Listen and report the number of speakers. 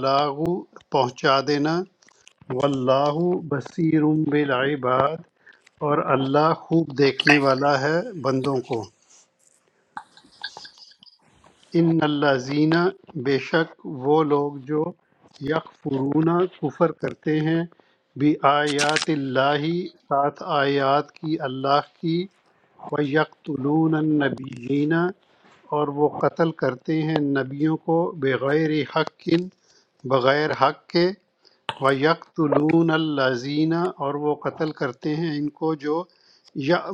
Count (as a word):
one